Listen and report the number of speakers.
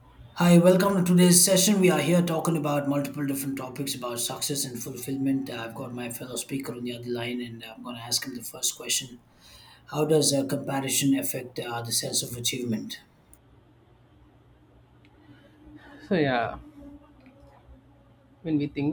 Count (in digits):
2